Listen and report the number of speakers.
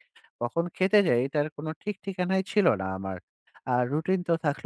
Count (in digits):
1